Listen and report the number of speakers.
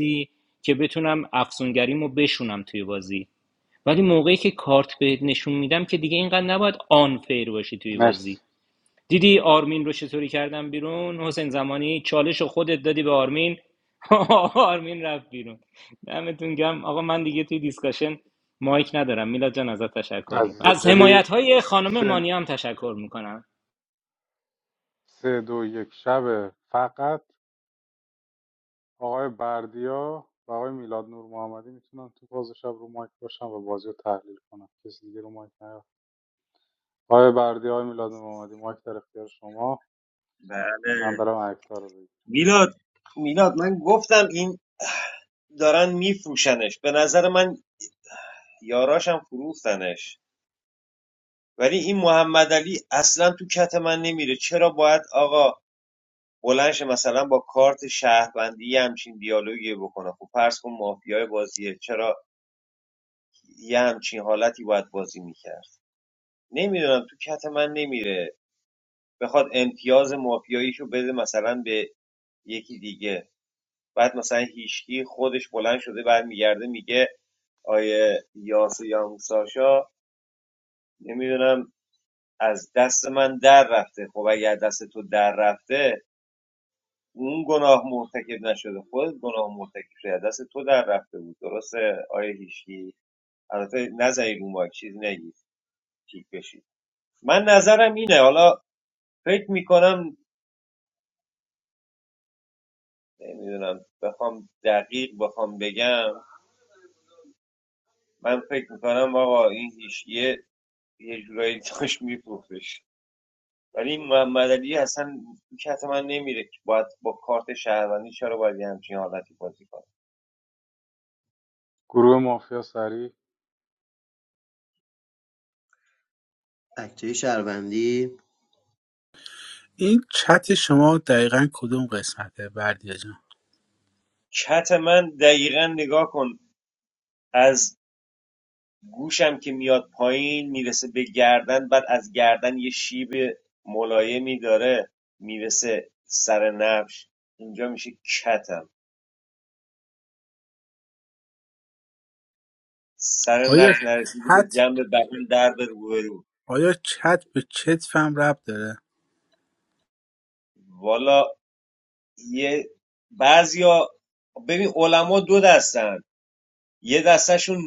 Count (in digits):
5